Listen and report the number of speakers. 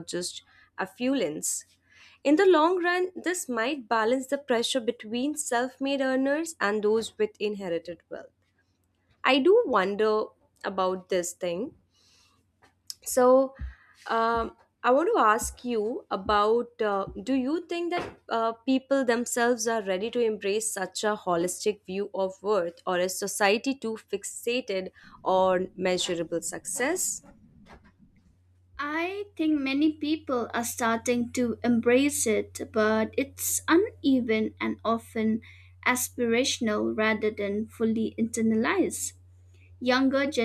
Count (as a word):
two